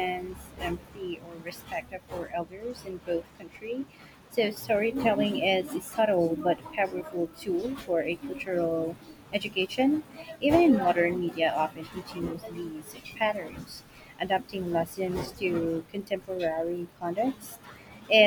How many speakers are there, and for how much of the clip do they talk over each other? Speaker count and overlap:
1, no overlap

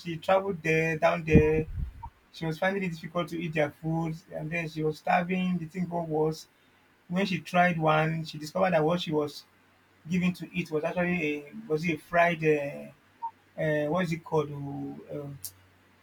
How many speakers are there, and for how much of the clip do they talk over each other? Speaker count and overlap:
1, no overlap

